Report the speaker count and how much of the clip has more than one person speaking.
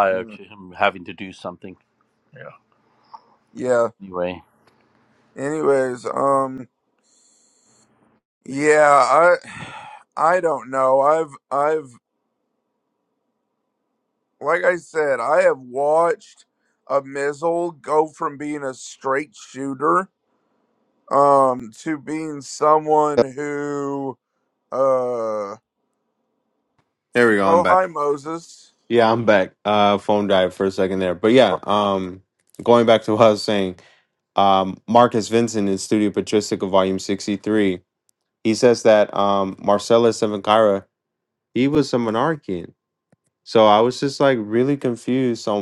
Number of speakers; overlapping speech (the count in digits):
3, about 1%